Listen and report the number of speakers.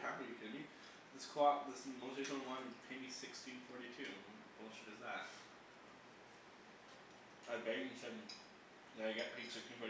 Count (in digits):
1